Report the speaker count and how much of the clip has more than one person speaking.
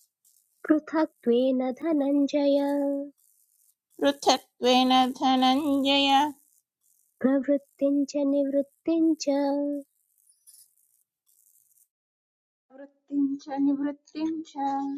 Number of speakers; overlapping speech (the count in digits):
3, no overlap